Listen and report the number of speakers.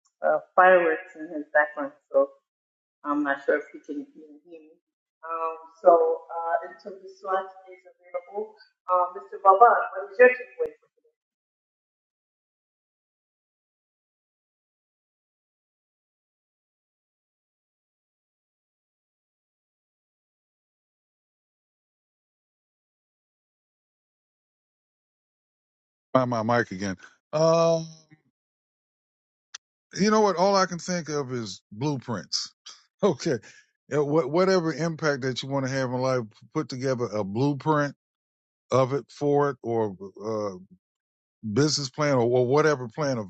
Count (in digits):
2